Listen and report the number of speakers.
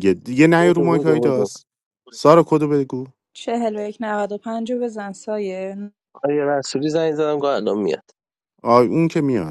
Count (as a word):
three